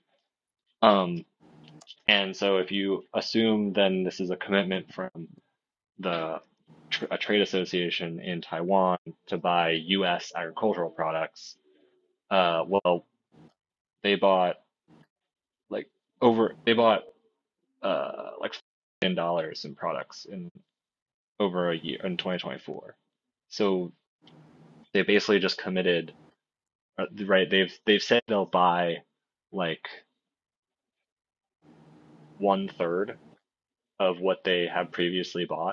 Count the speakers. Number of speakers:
1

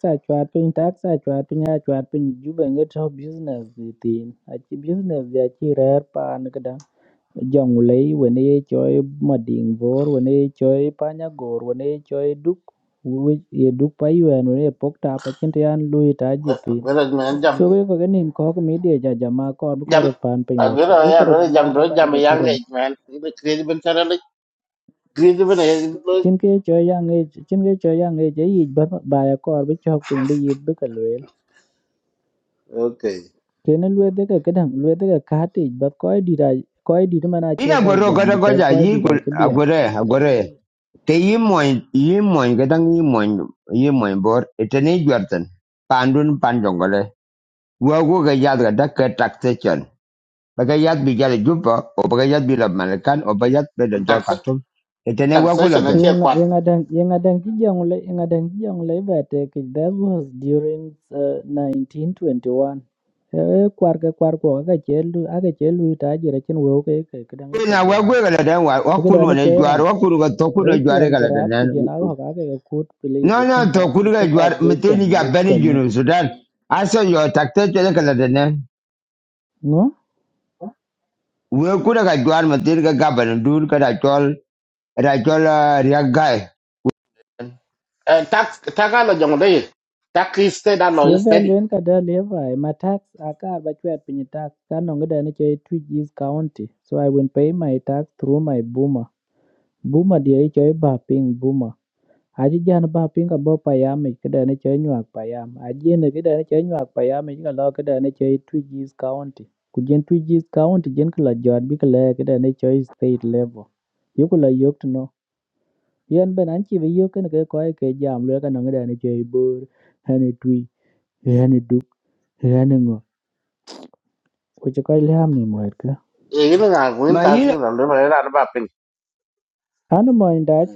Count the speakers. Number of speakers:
3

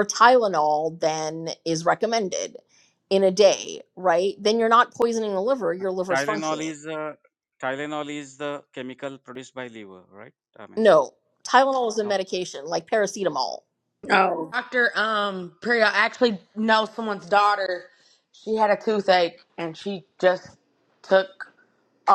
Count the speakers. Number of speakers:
3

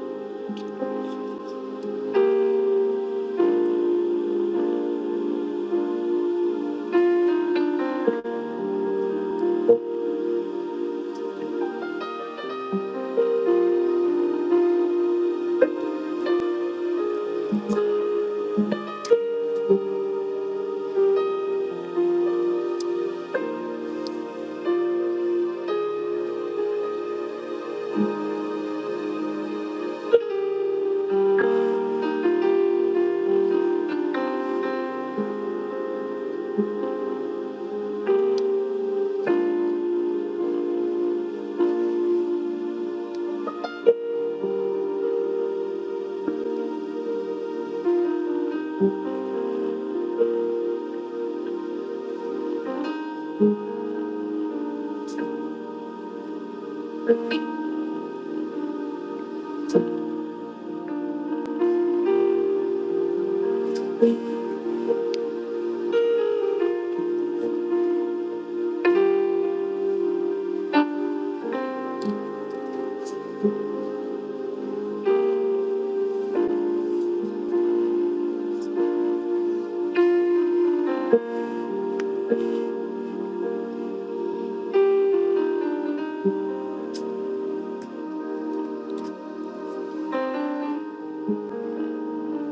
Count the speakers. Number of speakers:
0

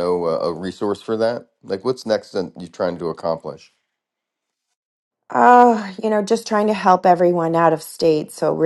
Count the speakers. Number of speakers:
2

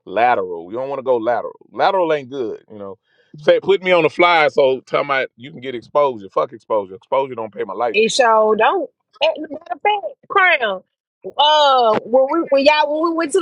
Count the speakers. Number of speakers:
2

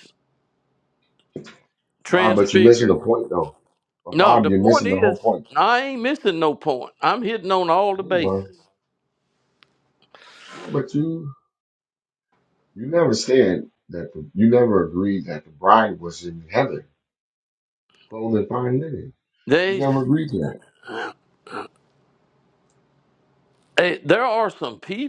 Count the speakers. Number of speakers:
2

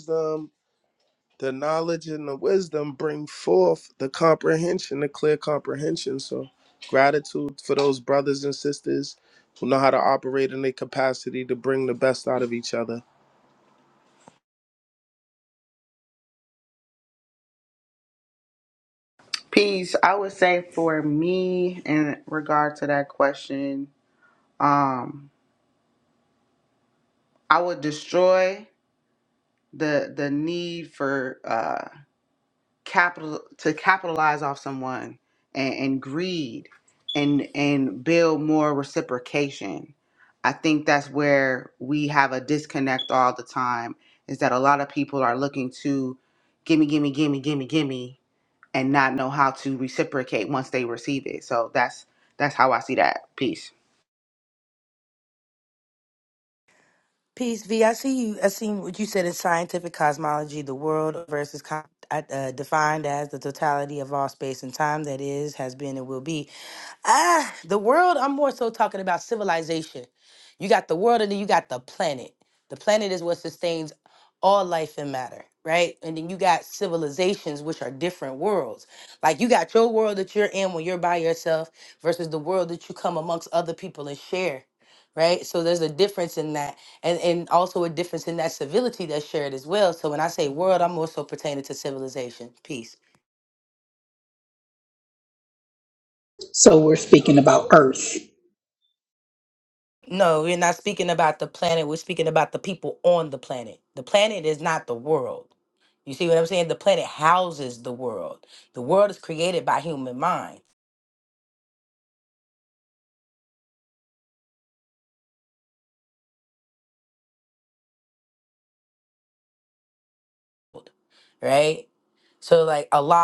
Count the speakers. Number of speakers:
4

